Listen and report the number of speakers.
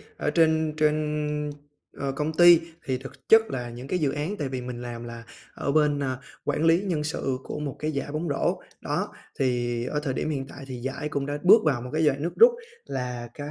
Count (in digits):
1